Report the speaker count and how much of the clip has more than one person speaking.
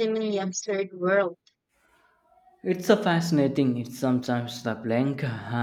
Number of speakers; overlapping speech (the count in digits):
2, no overlap